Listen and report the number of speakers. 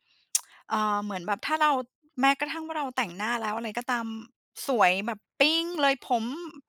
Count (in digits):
1